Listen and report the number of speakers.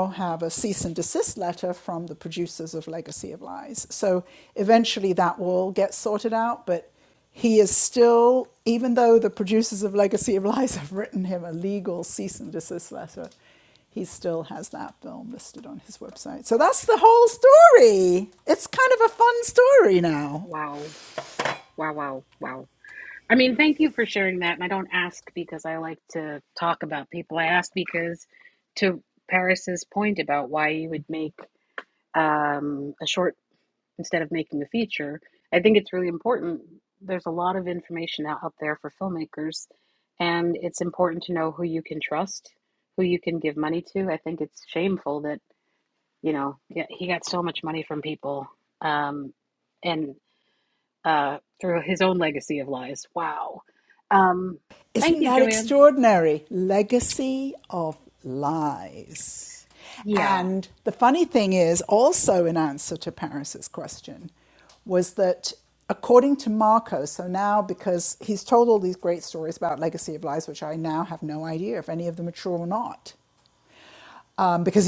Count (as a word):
two